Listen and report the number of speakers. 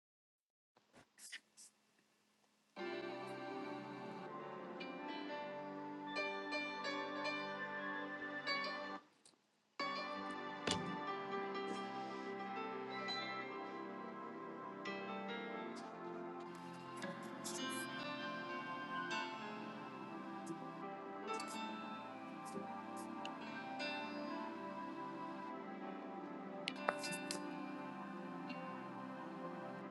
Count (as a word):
zero